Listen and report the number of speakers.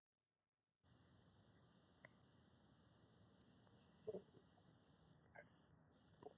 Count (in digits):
0